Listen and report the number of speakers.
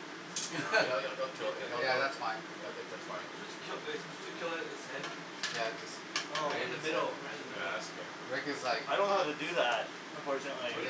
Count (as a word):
four